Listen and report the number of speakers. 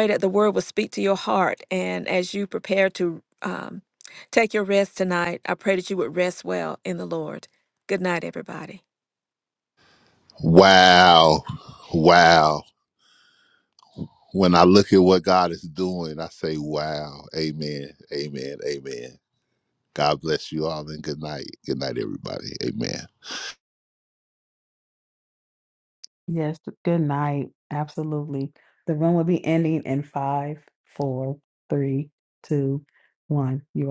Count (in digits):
3